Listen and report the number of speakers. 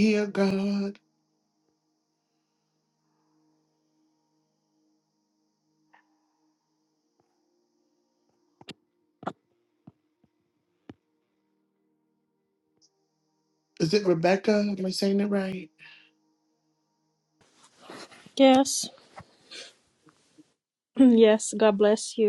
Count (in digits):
2